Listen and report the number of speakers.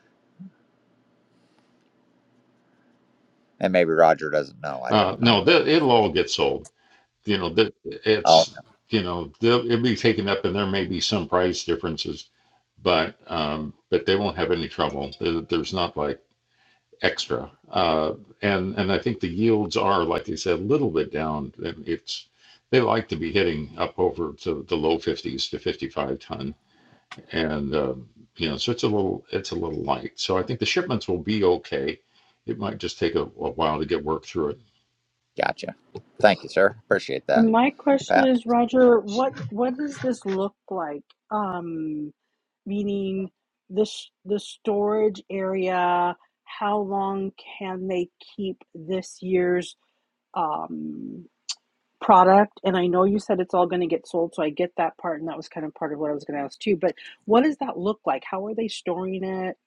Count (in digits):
3